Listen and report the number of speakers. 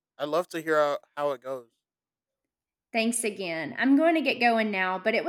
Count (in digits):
2